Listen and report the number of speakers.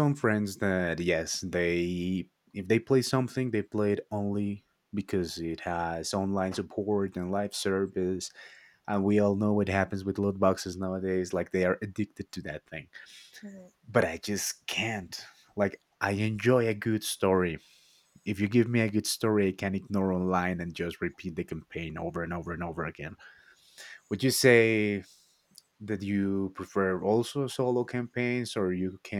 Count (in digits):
1